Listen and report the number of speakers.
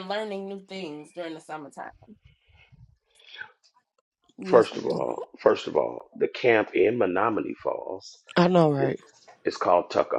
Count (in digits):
3